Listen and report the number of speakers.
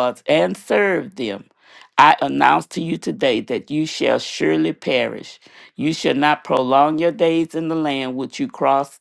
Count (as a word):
one